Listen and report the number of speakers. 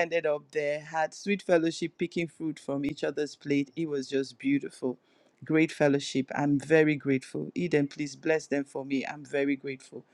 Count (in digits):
1